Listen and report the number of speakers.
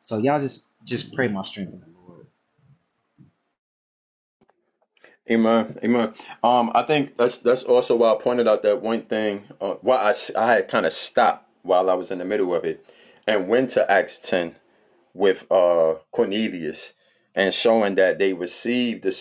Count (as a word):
two